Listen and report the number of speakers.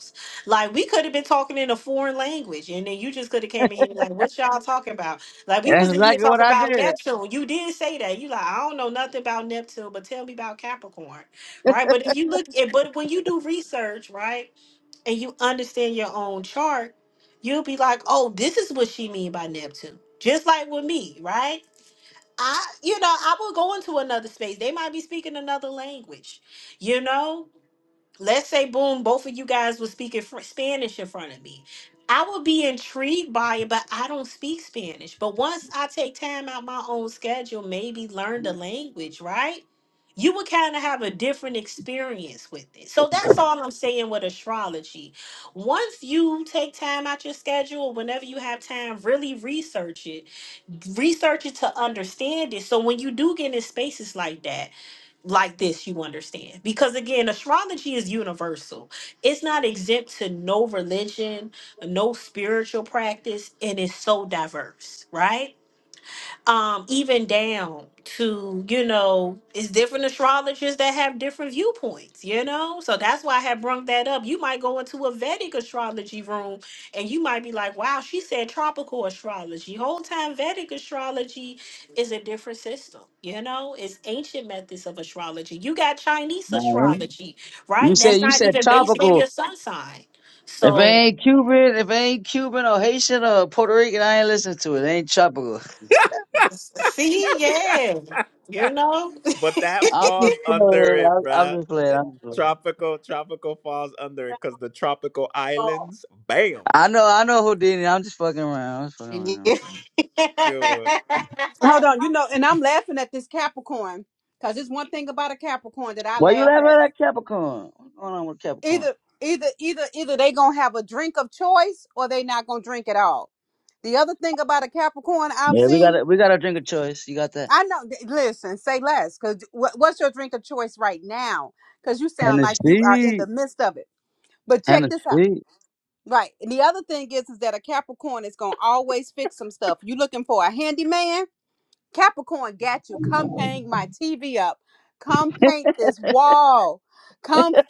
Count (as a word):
four